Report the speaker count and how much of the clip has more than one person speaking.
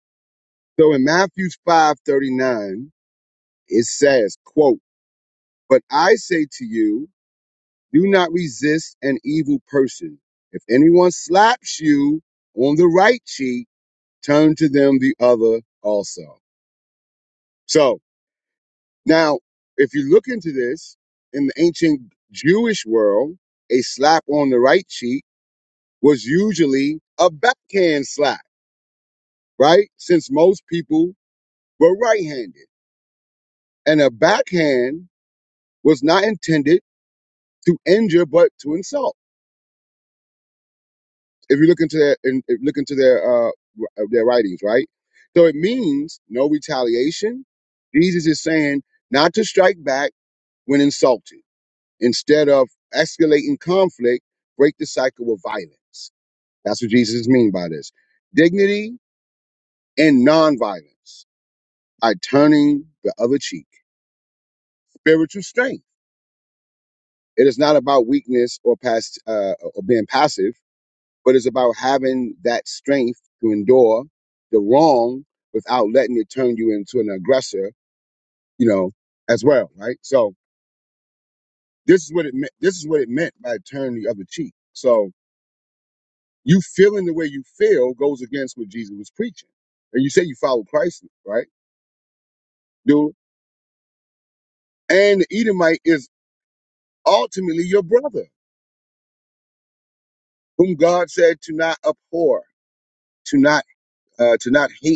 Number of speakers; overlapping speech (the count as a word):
one, no overlap